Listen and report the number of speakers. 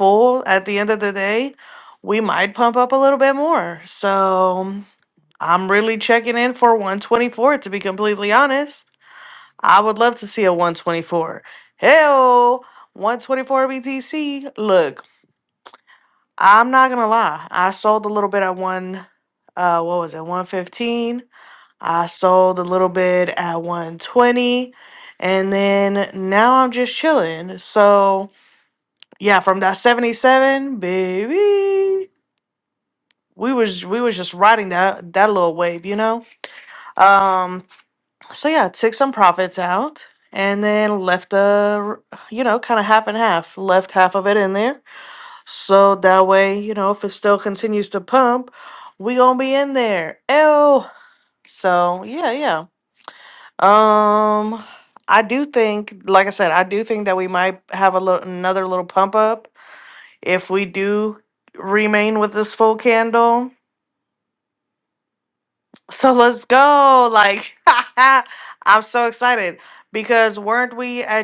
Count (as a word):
one